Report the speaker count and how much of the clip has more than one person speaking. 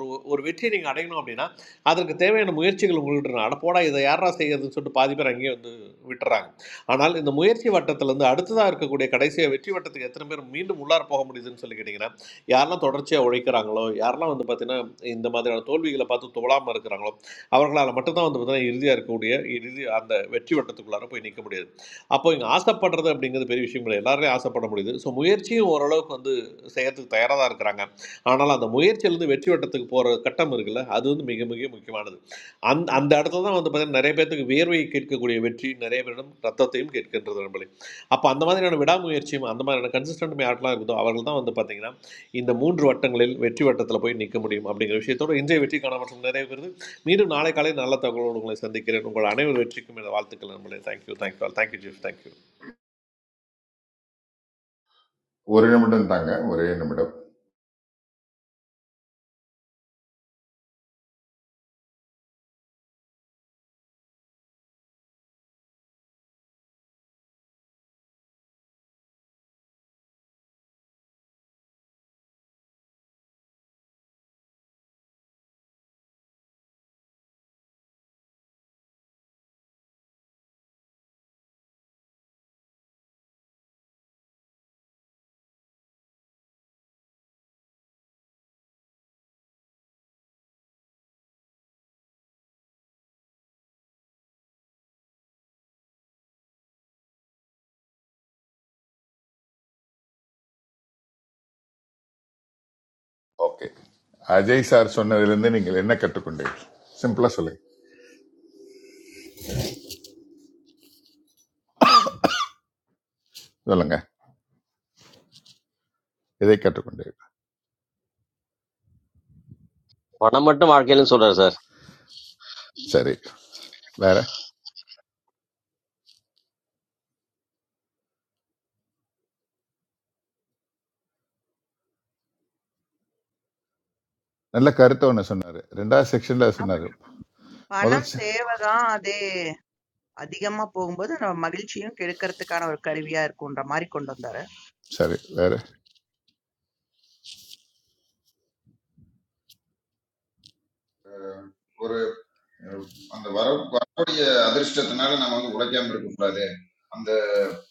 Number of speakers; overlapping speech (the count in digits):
5, under 1%